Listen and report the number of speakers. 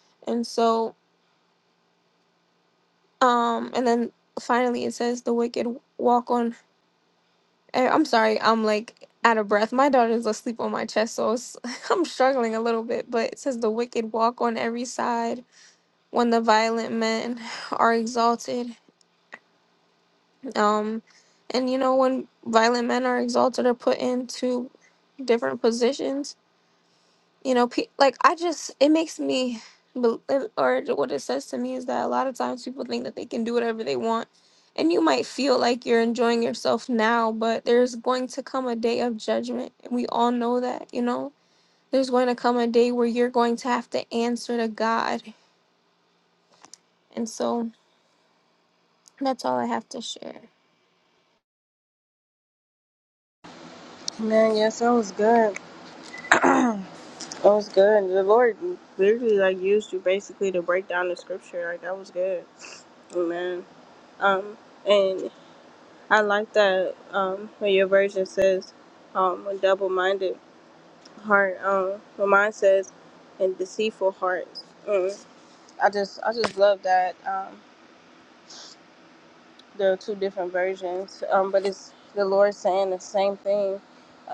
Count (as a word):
two